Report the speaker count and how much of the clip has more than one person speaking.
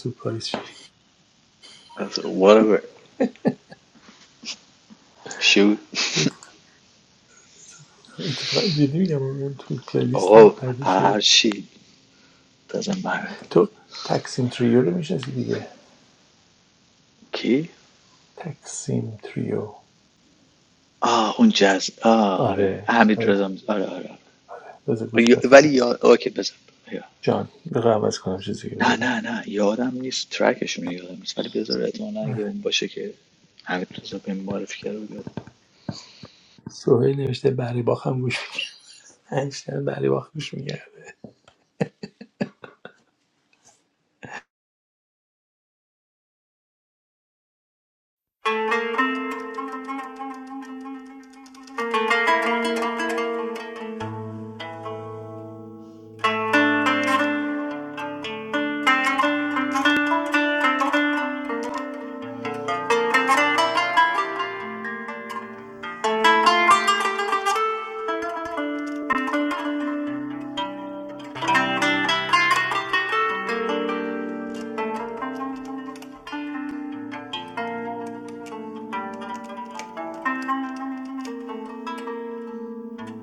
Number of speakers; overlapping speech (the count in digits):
2, about 4%